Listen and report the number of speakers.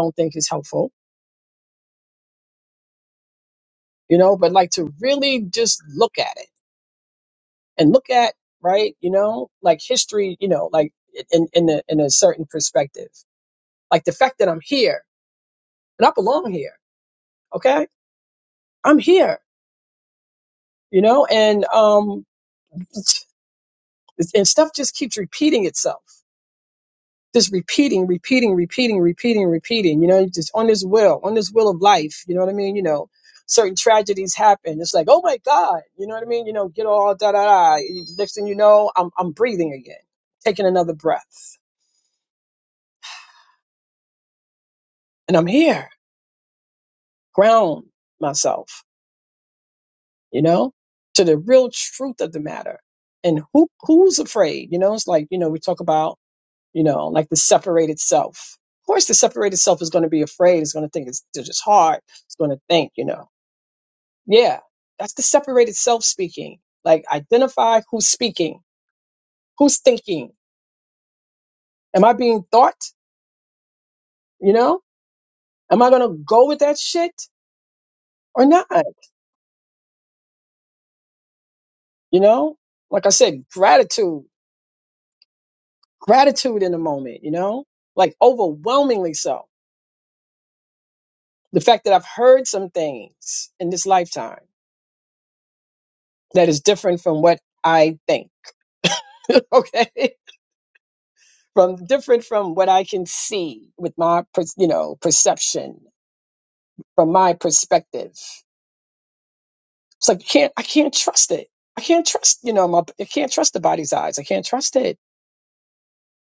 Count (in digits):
1